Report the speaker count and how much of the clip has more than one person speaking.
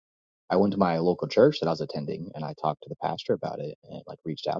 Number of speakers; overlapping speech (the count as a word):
one, no overlap